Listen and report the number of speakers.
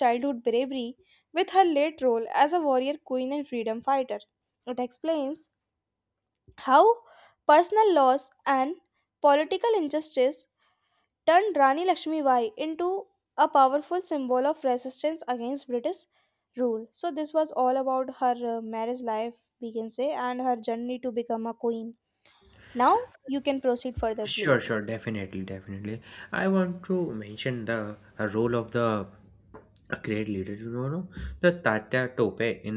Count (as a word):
two